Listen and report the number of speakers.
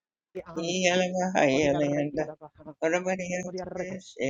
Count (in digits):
2